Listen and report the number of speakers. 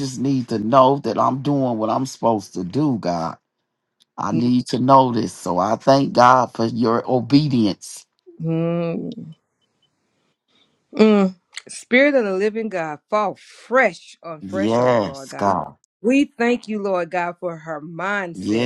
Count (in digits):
2